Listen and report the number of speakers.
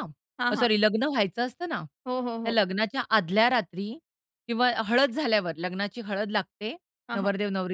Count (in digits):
2